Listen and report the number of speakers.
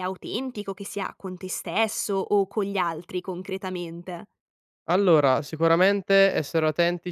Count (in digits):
2